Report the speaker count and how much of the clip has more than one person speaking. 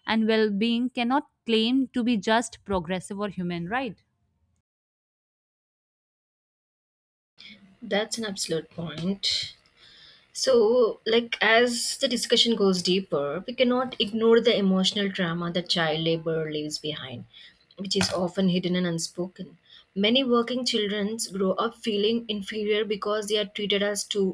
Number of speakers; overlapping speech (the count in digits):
2, no overlap